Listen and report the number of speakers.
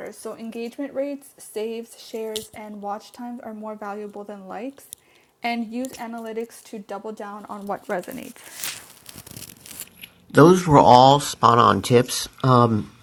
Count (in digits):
2